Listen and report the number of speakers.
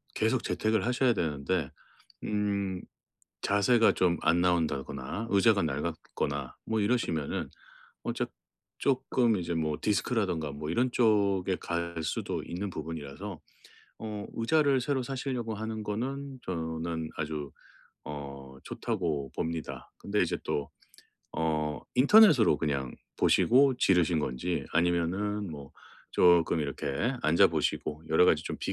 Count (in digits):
1